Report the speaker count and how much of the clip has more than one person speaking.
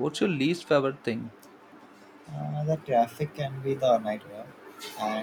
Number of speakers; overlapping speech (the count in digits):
2, no overlap